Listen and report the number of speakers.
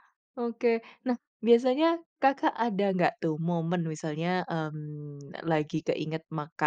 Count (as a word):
one